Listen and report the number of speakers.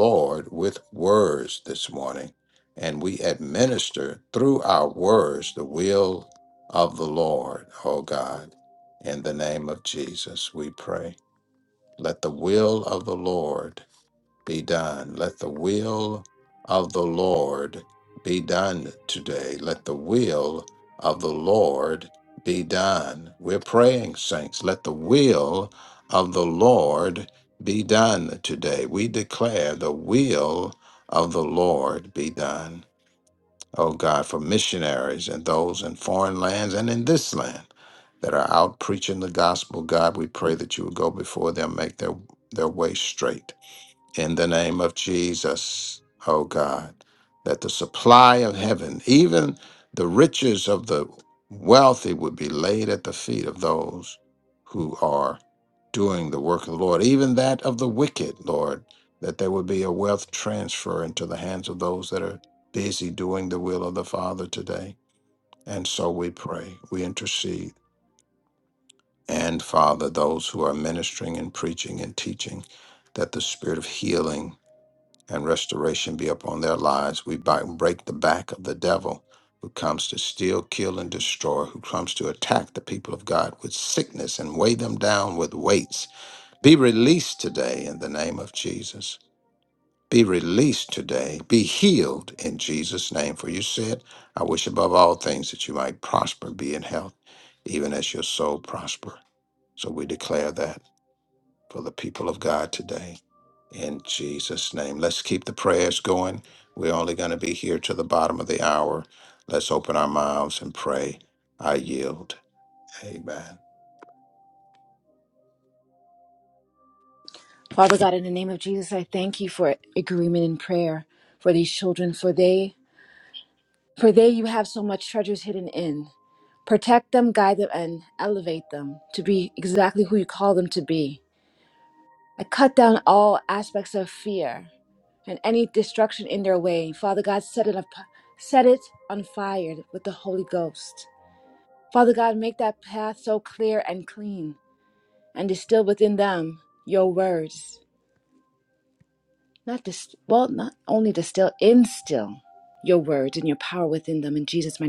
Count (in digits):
2